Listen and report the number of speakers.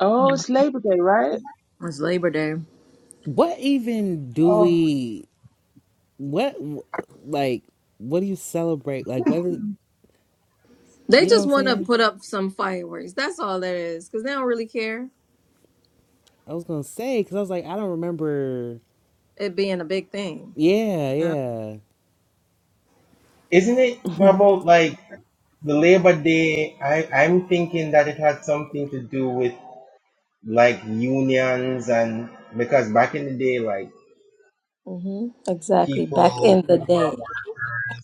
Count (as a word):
four